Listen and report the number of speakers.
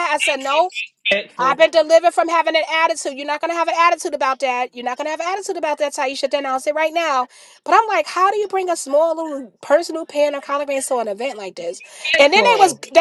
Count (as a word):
two